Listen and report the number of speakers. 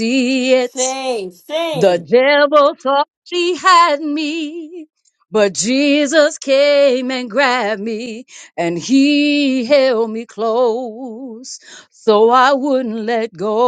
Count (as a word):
two